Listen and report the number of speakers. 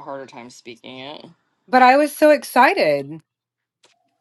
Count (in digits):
2